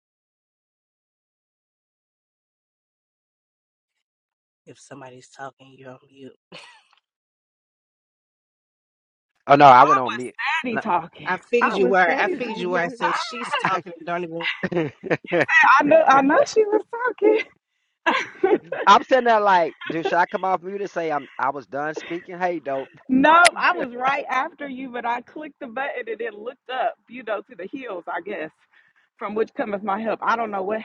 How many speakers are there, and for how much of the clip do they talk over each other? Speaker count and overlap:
three, about 9%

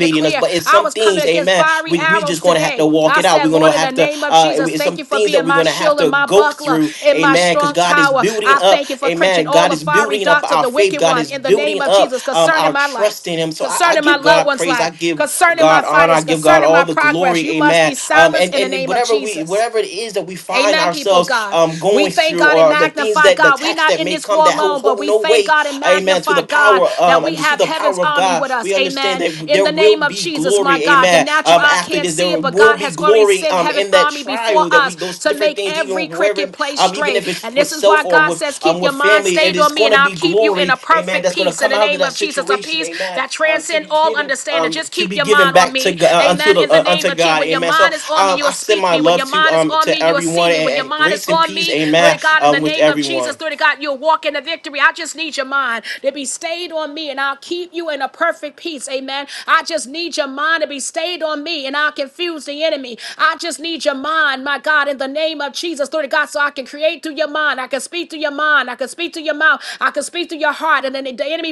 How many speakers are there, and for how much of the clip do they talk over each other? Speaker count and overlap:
two, about 70%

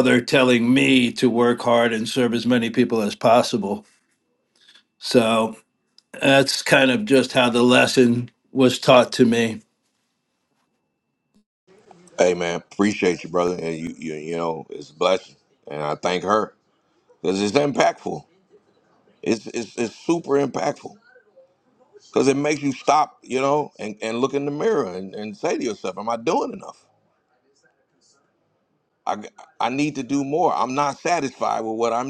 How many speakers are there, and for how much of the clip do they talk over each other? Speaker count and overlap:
two, no overlap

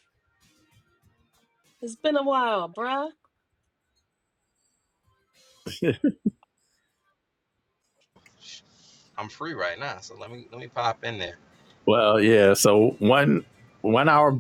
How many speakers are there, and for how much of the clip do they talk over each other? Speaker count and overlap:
three, no overlap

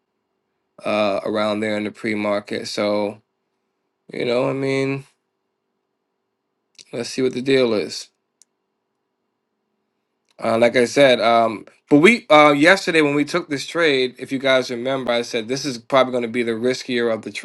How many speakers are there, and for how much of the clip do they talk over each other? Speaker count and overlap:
one, no overlap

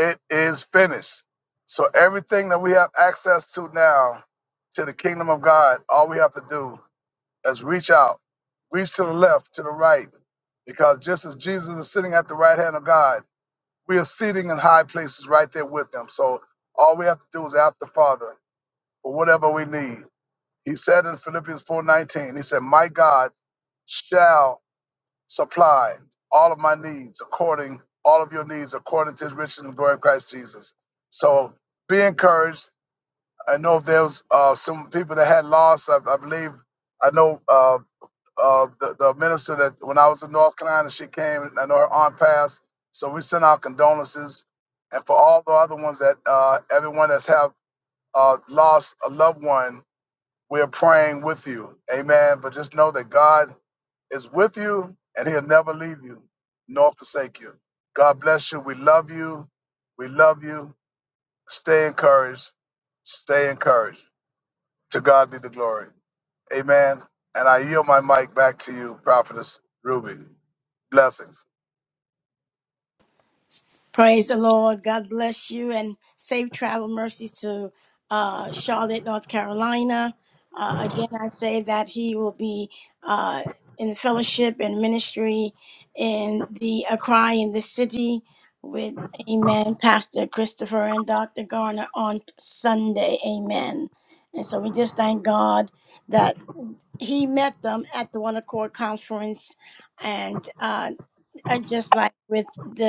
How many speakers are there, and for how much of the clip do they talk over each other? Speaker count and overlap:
two, no overlap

